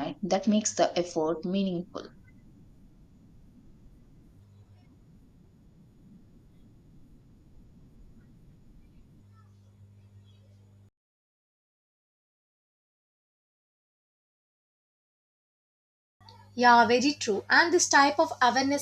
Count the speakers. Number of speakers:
two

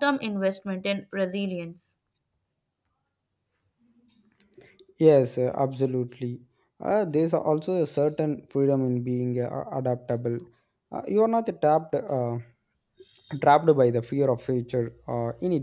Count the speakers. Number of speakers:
two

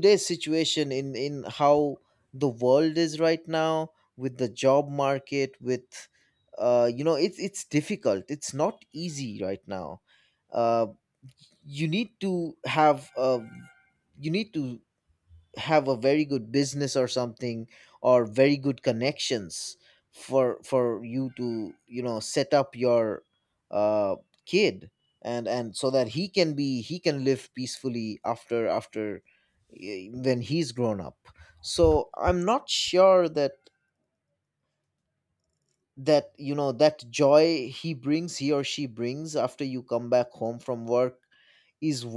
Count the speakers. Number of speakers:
one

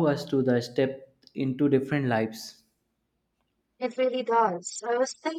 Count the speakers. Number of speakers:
two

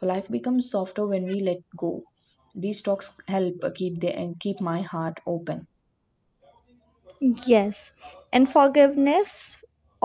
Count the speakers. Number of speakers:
two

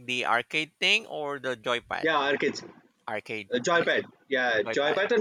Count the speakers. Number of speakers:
two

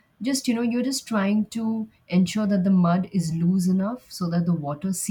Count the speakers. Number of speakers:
one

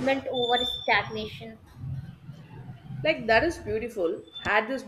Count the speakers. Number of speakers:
two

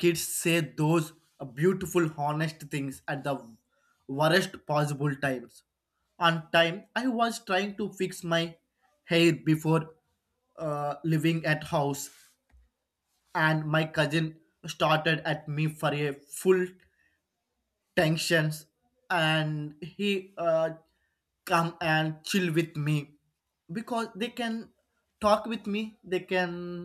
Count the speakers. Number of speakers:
one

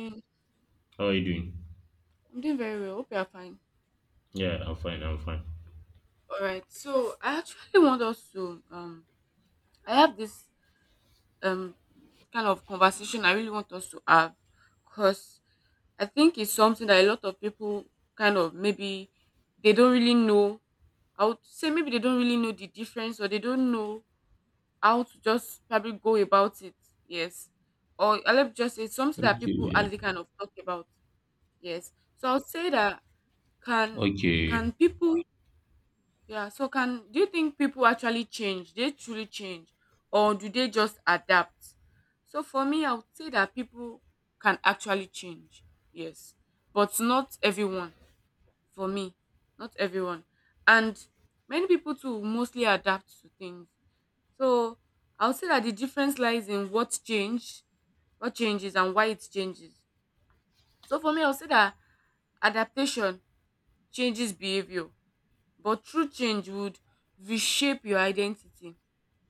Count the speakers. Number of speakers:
two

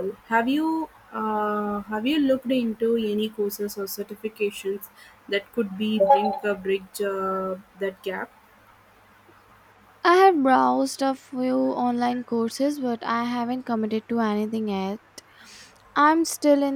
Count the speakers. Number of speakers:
two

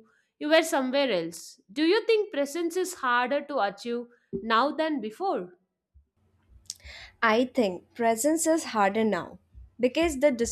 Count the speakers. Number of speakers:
two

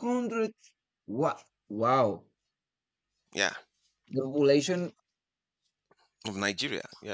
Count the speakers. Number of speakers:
two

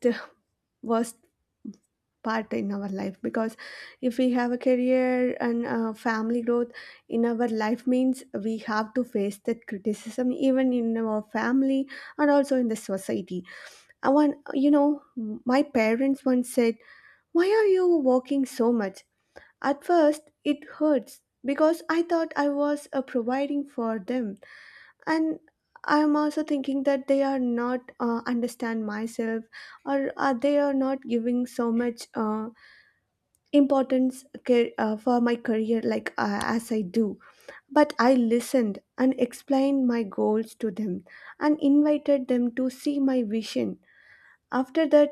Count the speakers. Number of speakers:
one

